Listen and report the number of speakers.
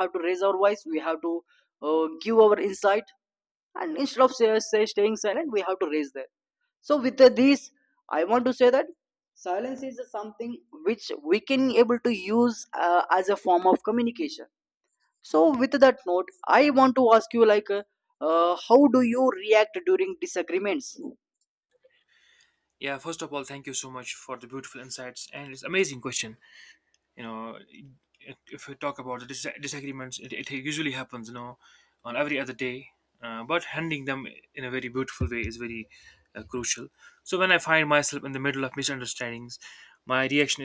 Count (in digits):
2